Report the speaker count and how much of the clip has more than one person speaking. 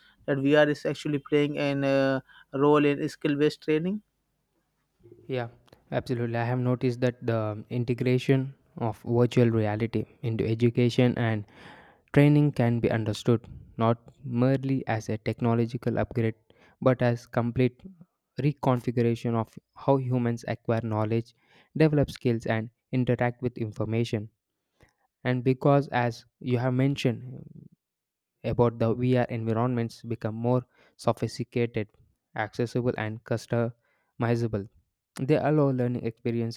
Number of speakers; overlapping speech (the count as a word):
two, no overlap